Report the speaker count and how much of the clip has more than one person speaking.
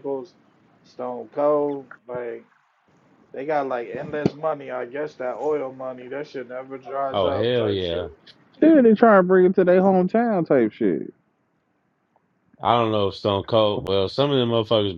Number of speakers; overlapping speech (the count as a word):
three, about 6%